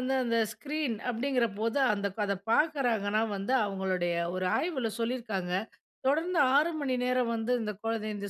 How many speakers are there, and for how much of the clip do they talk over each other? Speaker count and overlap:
1, no overlap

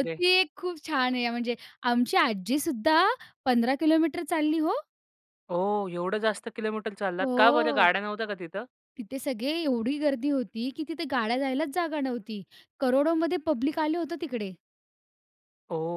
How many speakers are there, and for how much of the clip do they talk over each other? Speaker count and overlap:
2, about 6%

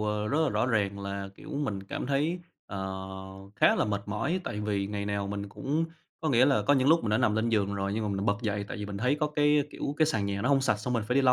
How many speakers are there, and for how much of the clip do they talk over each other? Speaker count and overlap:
1, no overlap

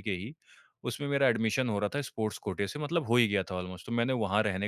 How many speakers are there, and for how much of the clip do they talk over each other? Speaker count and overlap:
1, no overlap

